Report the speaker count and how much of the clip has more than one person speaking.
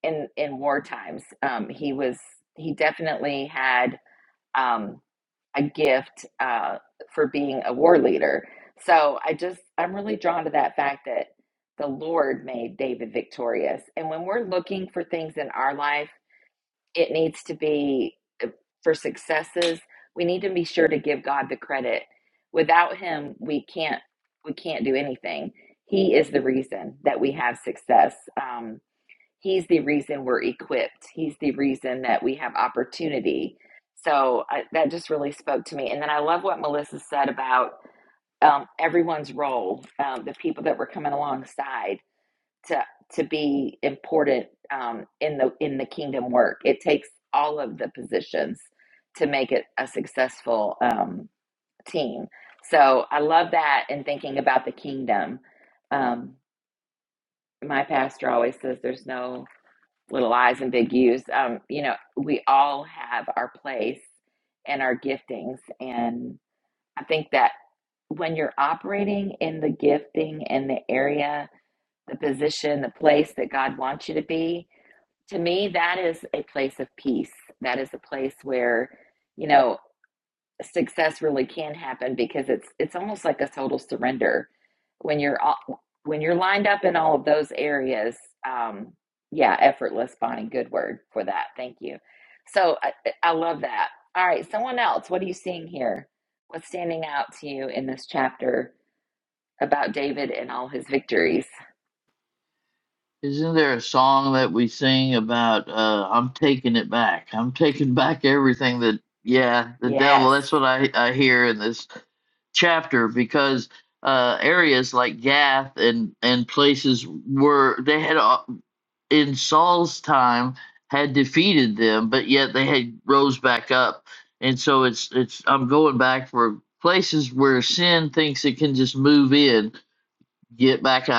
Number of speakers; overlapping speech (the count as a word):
two, under 1%